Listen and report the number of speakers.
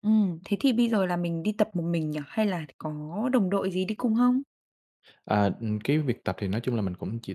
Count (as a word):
two